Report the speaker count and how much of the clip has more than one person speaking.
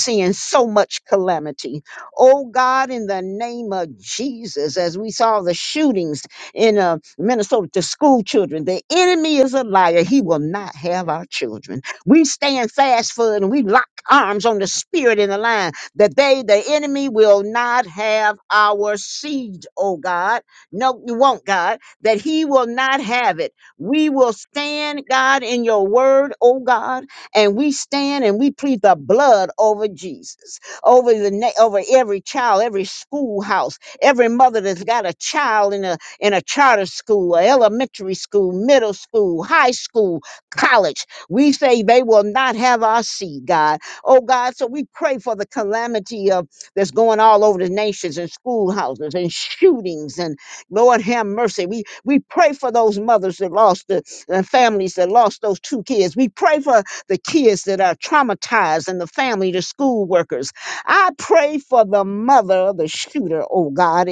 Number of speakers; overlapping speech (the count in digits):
1, no overlap